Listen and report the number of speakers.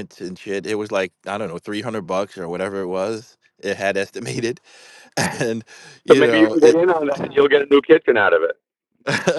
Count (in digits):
2